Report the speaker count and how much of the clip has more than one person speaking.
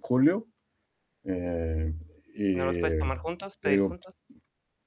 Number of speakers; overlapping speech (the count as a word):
two, about 17%